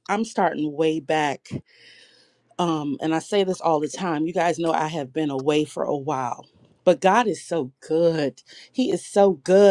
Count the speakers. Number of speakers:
1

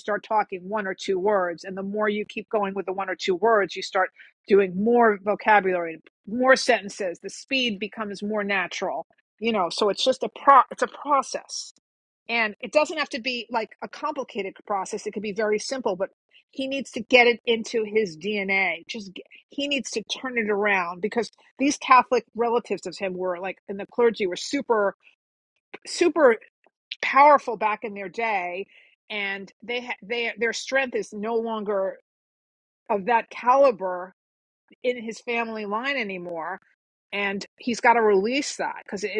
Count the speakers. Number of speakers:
1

